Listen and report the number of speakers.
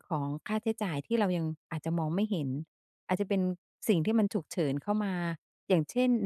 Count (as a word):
one